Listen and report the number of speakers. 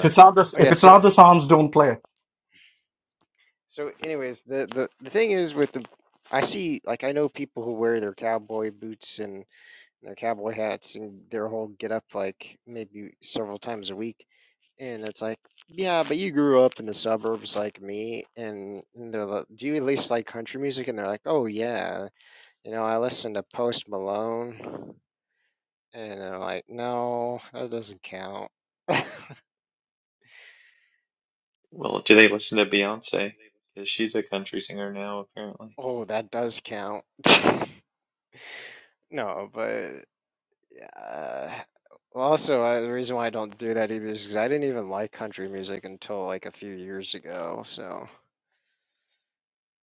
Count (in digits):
3